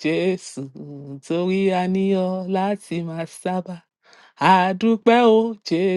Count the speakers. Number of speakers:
1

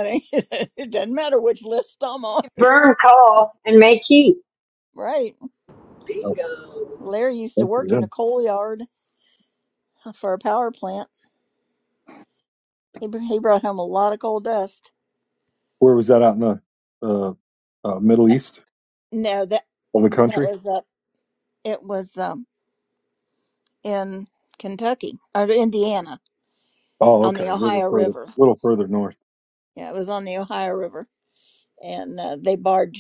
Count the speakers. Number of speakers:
4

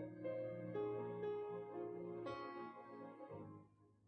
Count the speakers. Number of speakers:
0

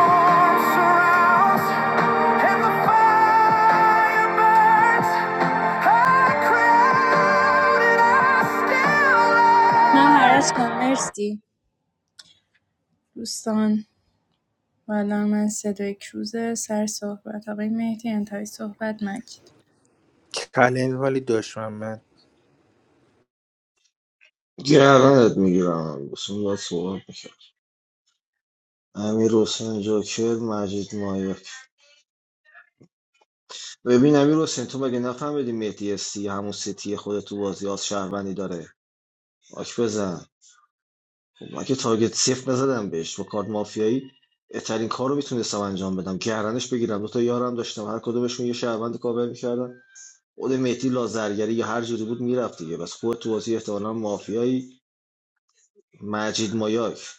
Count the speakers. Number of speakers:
4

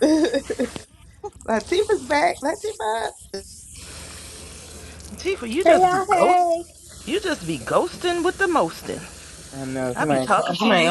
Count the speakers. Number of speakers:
3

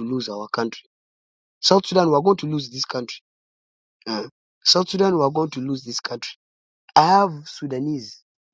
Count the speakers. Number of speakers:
1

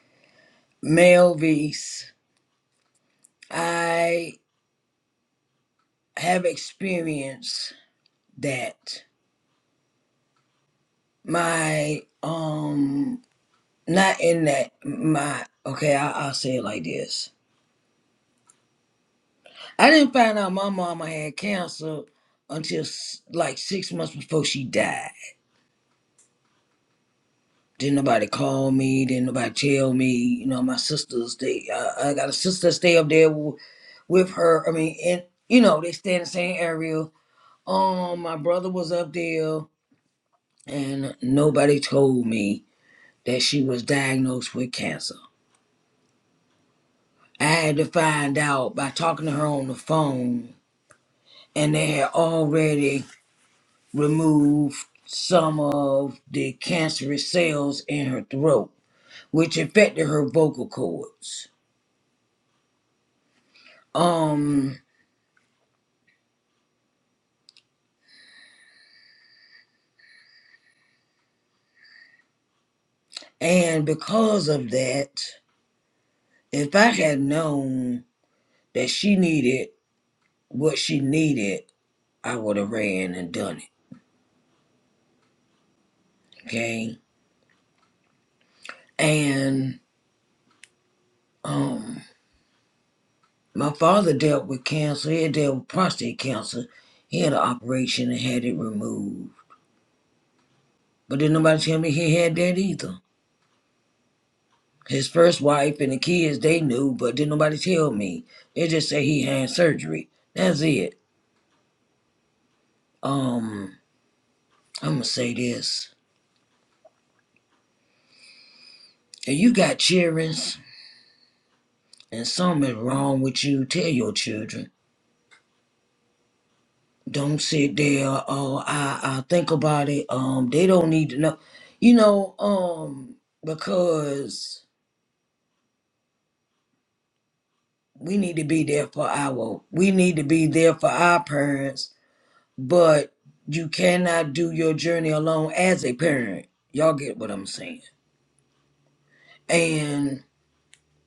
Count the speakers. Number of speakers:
1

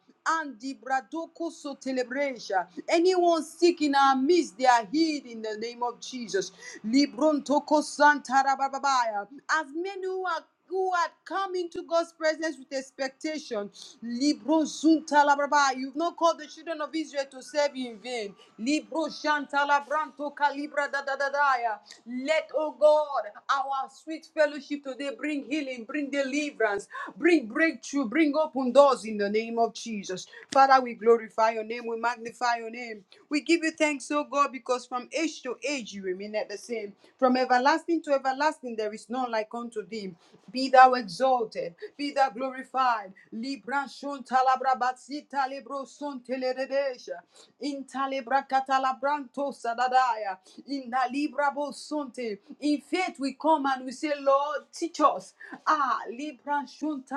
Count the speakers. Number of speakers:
1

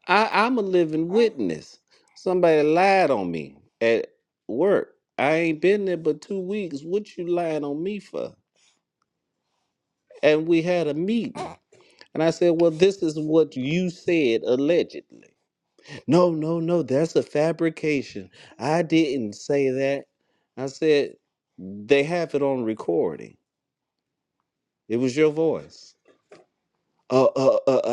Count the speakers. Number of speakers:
1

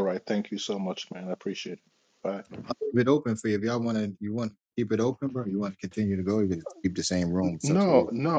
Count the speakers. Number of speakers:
2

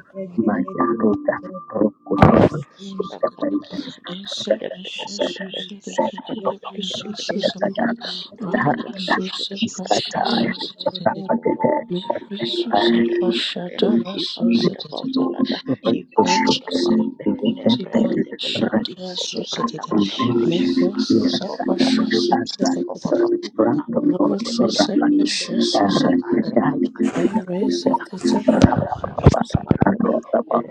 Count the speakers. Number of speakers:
3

